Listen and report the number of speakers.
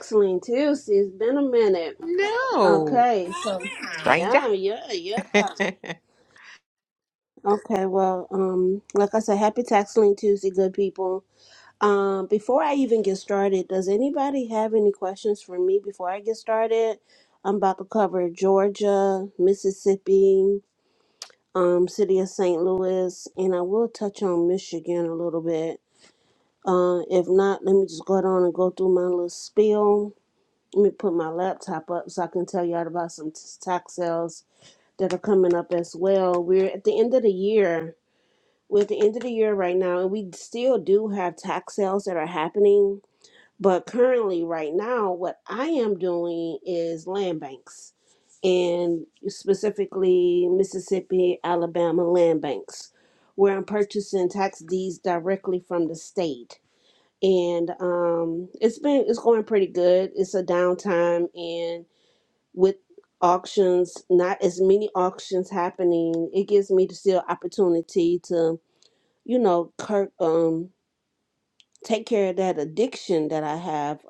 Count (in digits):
2